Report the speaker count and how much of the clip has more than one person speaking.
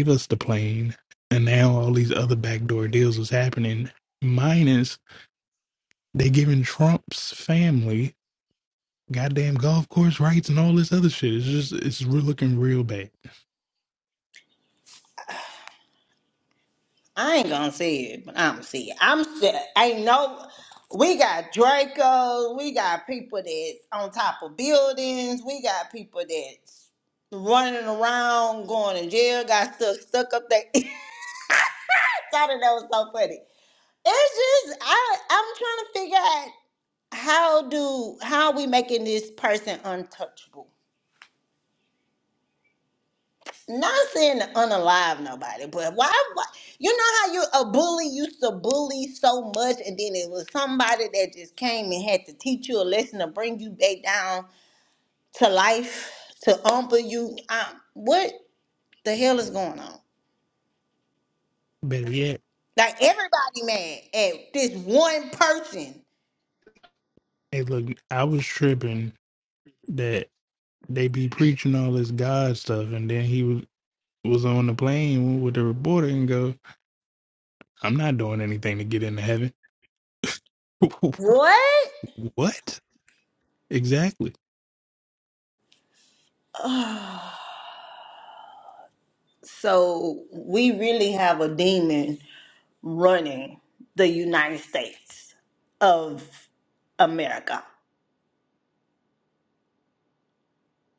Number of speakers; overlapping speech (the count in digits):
2, no overlap